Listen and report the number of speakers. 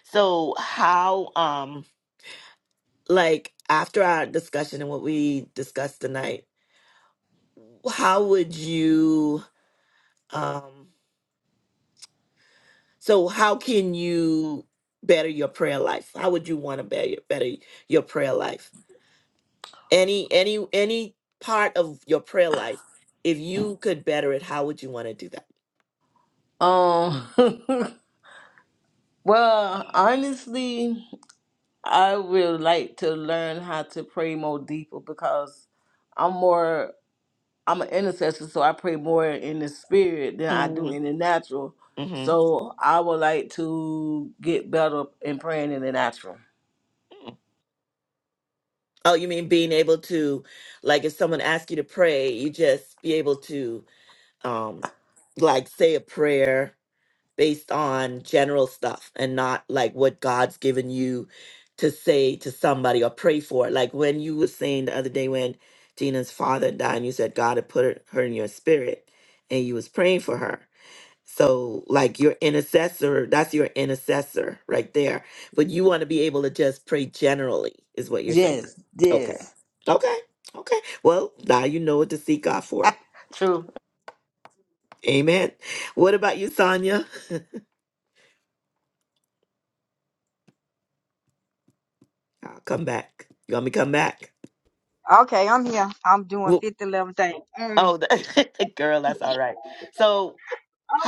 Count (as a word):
three